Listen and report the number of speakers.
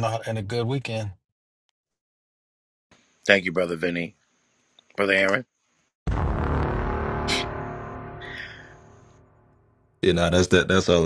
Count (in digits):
3